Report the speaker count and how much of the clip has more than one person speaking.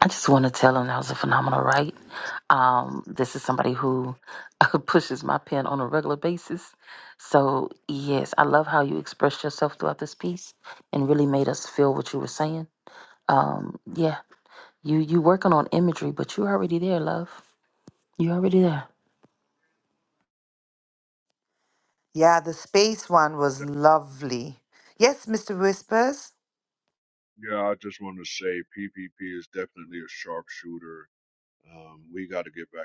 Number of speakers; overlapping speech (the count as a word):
three, about 1%